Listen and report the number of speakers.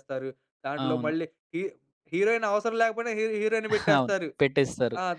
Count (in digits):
2